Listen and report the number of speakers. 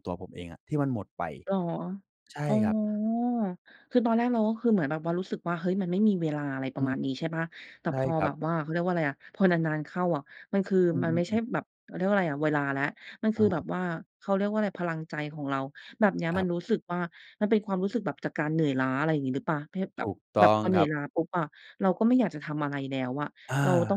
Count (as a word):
two